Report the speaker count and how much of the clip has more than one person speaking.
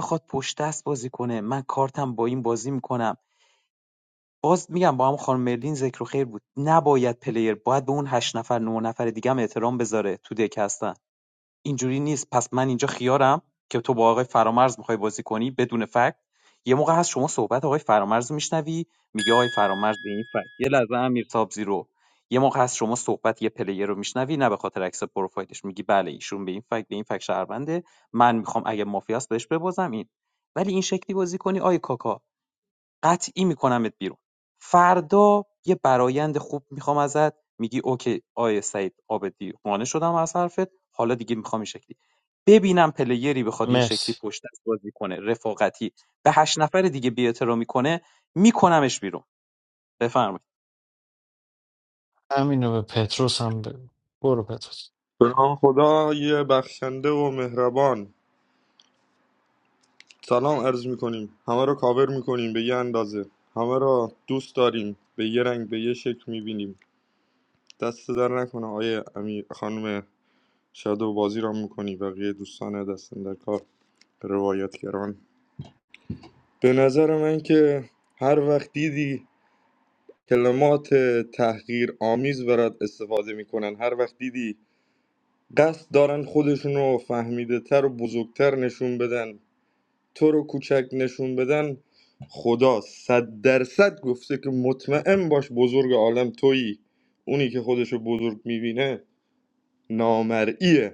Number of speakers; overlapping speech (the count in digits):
3, under 1%